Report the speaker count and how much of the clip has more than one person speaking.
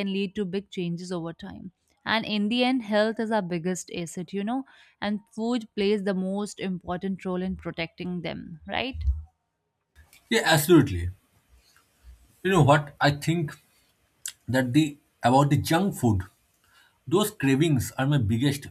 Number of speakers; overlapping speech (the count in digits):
2, no overlap